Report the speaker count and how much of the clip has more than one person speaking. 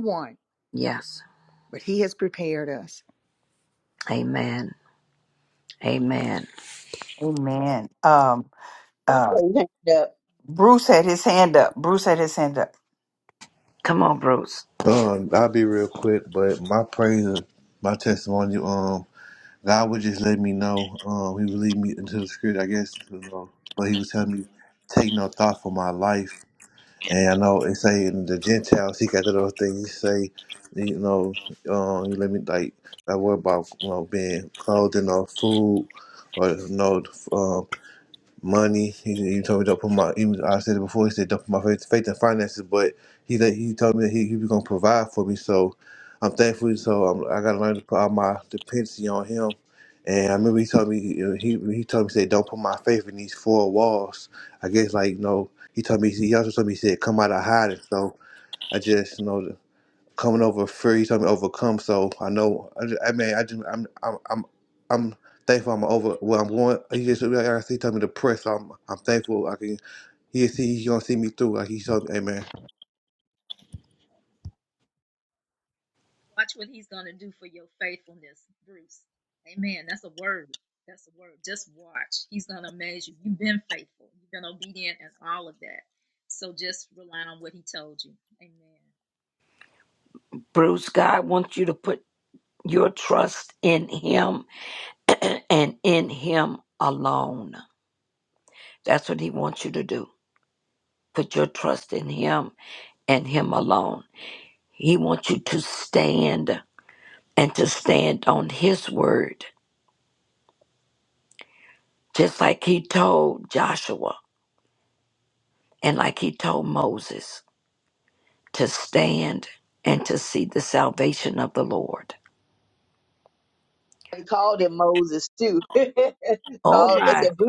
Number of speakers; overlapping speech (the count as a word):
six, under 1%